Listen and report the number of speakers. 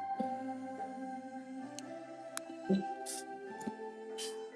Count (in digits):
0